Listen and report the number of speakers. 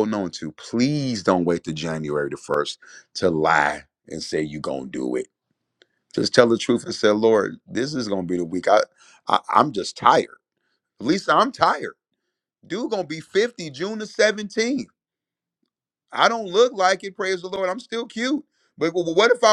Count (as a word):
one